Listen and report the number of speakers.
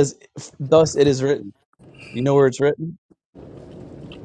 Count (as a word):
one